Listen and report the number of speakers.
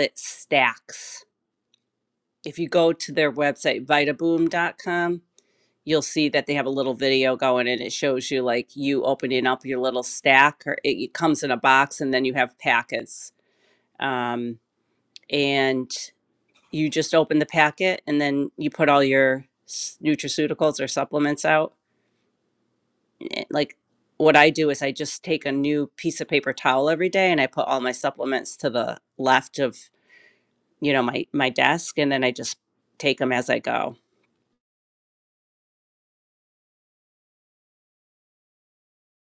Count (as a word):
one